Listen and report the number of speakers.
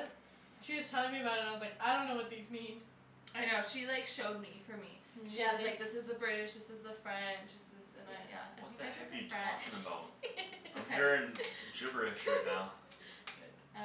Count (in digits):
3